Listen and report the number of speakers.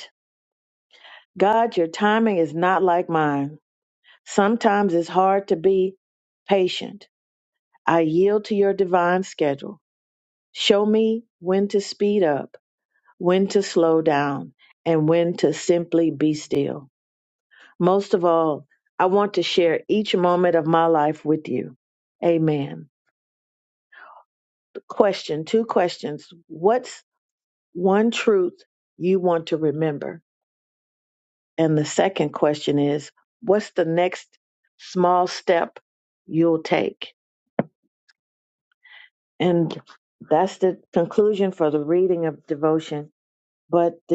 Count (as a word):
one